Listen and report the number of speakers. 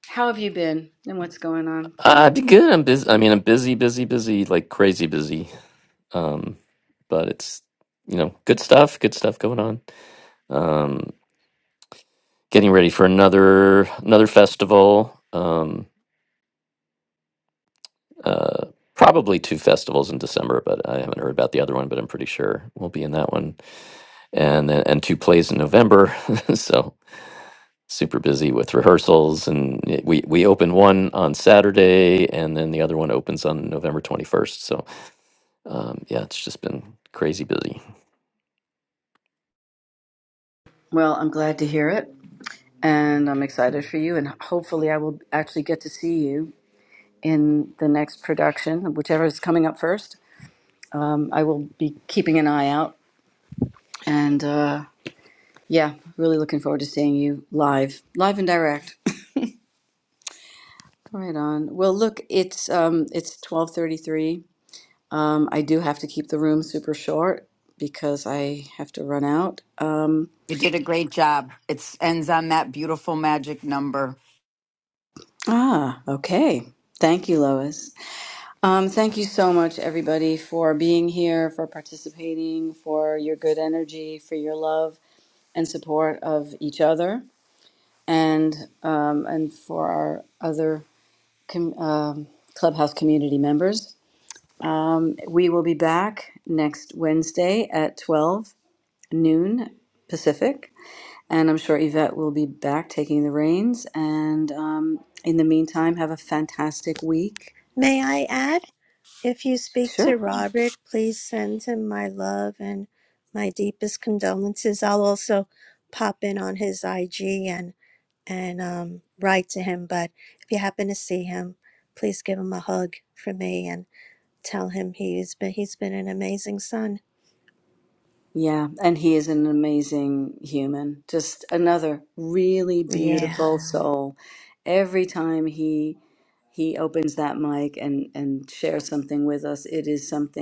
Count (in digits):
4